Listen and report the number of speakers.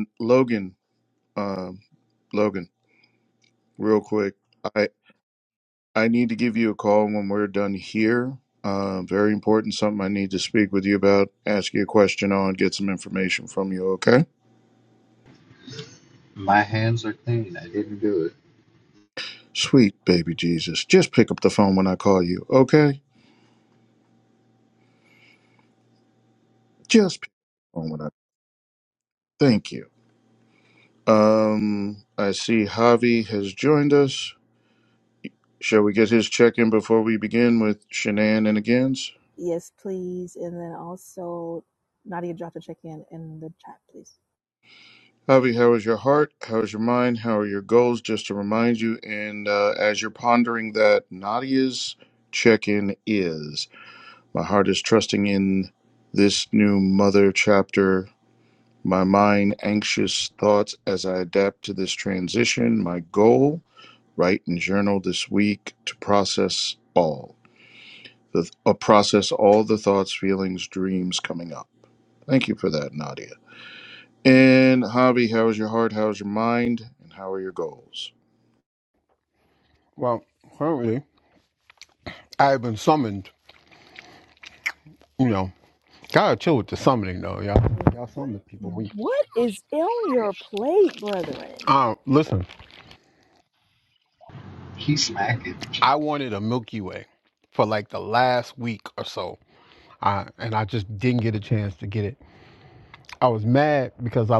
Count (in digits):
4